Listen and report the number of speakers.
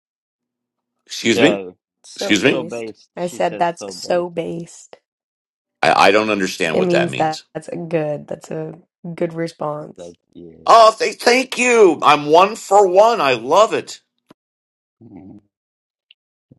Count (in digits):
3